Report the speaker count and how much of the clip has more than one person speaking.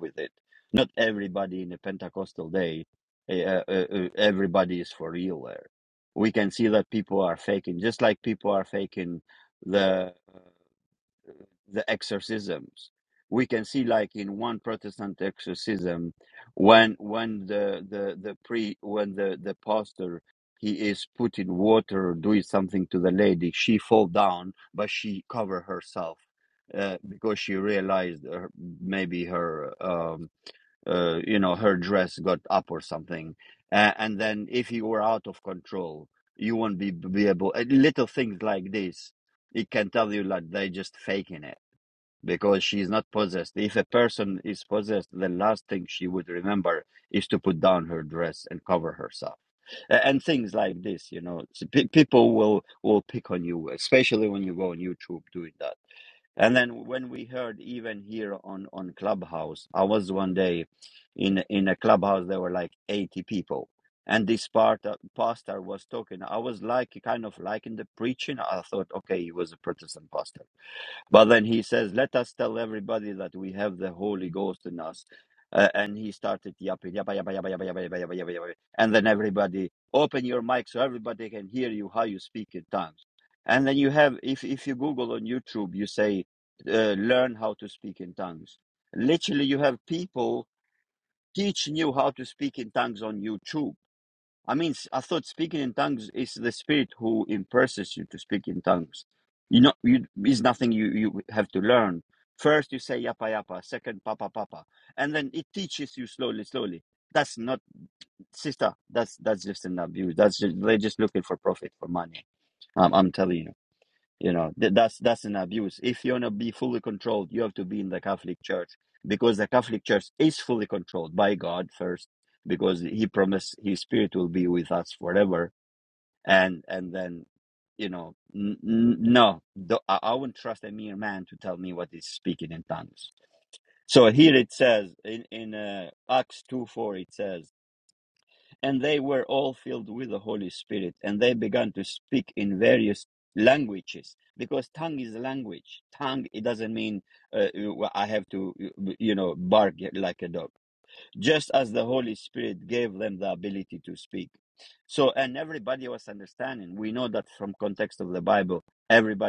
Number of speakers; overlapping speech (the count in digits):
1, no overlap